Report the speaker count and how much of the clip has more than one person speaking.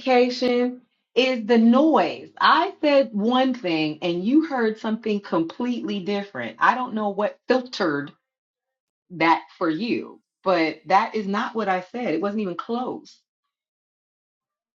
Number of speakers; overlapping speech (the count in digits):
1, no overlap